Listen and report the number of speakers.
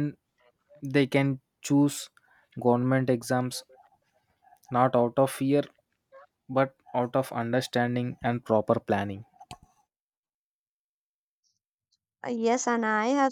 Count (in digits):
2